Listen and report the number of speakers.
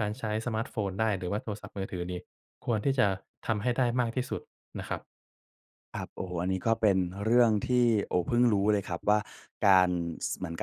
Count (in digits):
2